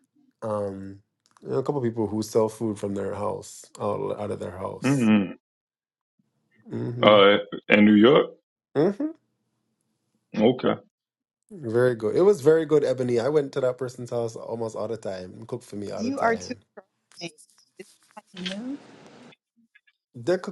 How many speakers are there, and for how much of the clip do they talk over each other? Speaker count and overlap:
3, about 4%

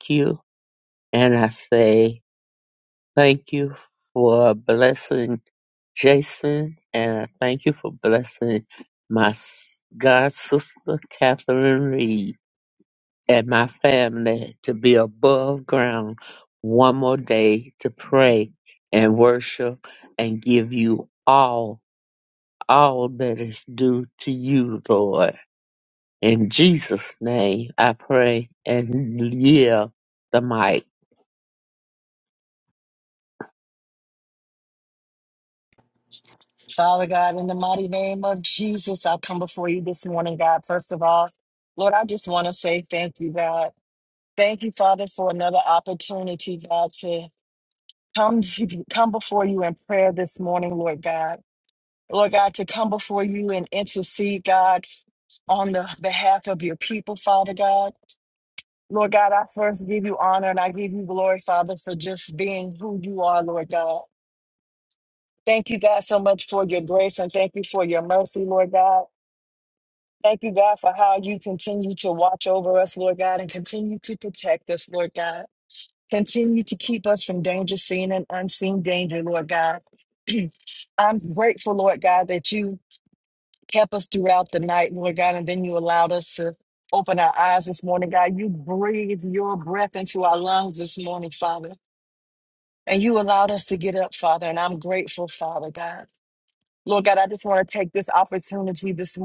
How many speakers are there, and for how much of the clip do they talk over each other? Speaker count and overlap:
2, no overlap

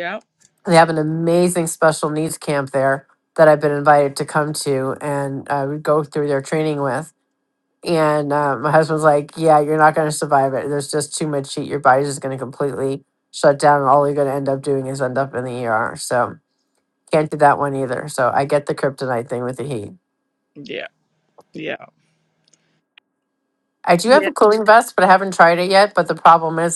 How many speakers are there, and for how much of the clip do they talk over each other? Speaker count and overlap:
2, about 1%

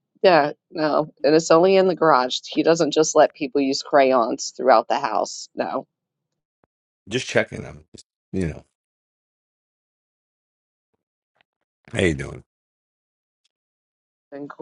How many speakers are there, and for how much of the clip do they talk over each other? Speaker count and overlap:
2, no overlap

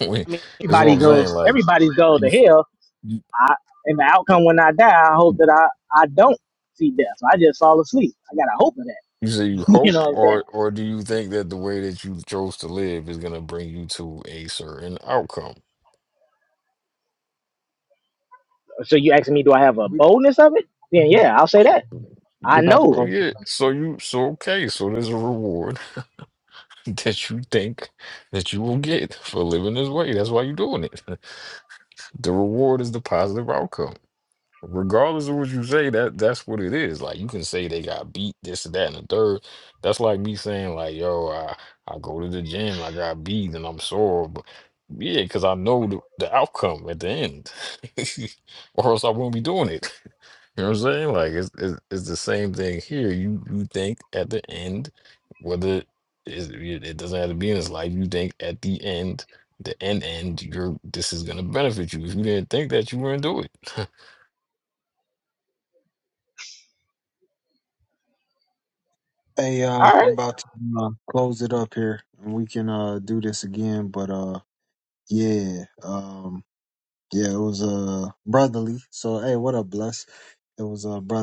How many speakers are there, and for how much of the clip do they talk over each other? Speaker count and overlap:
3, about 4%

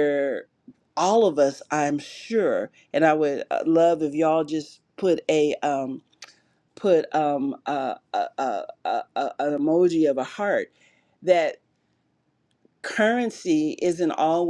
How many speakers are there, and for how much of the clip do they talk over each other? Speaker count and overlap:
1, no overlap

